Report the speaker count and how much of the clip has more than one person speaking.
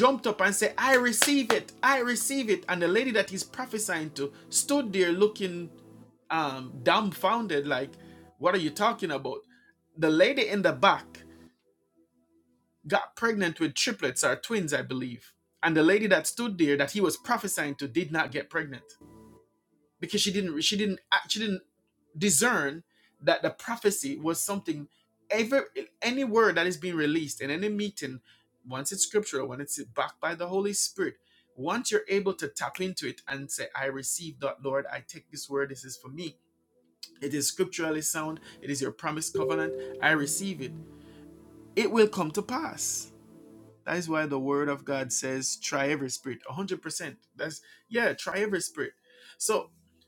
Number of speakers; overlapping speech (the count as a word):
one, no overlap